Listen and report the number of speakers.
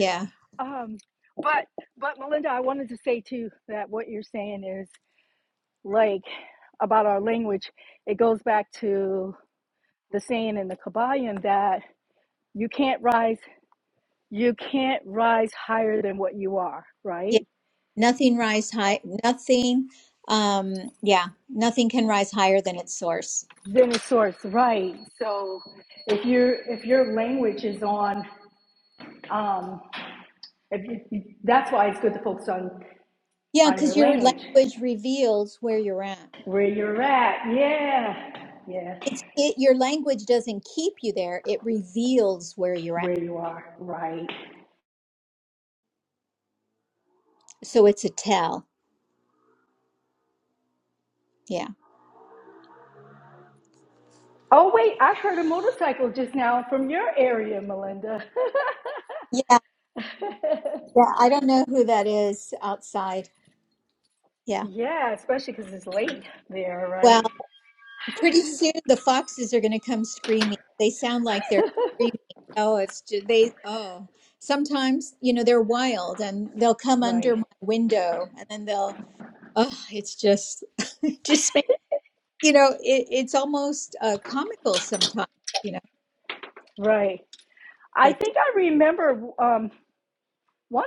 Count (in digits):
2